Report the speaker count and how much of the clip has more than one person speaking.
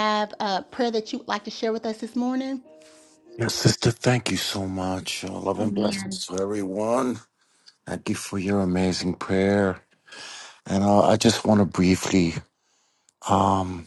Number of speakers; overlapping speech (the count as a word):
two, no overlap